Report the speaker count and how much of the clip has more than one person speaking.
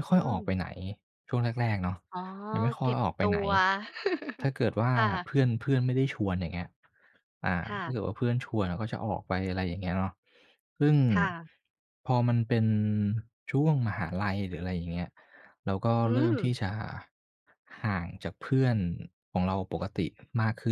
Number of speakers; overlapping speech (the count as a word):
two, about 8%